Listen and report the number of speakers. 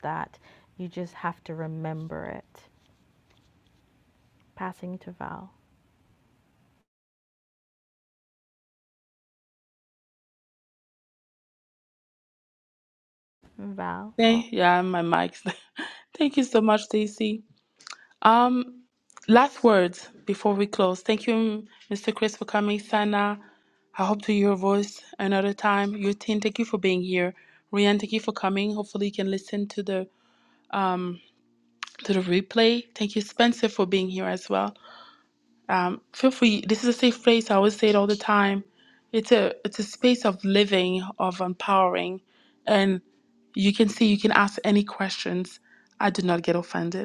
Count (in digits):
2